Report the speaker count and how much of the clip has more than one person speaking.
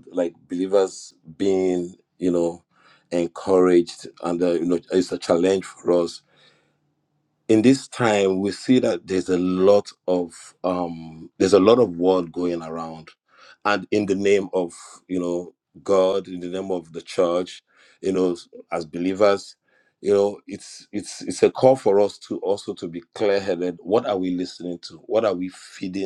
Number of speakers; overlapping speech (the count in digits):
1, no overlap